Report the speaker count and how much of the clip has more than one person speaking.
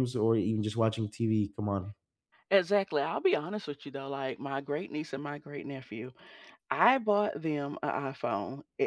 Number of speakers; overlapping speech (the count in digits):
2, no overlap